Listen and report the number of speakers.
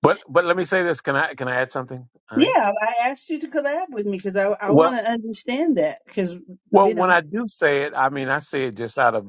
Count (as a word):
two